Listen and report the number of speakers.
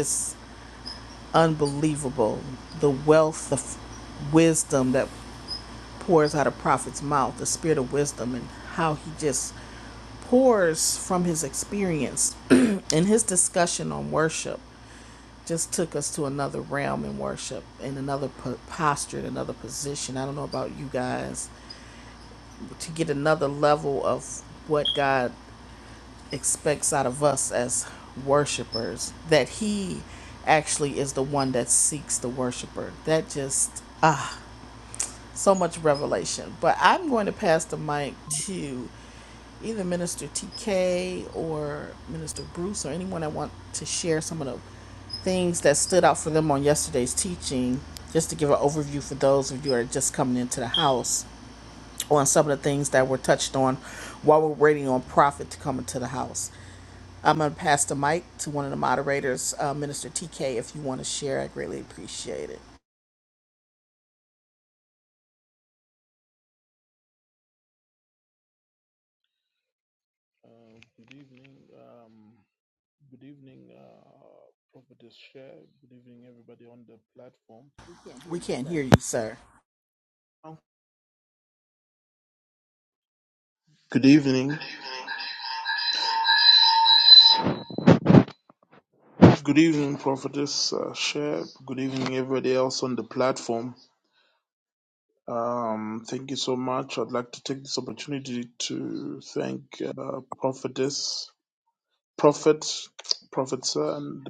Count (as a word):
two